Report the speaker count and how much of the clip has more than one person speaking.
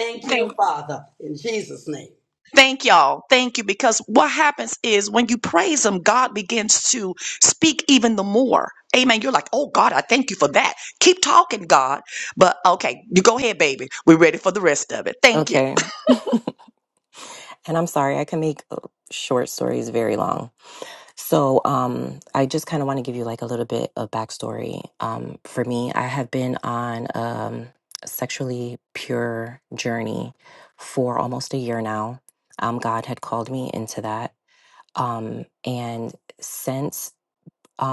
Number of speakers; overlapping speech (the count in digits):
3, about 1%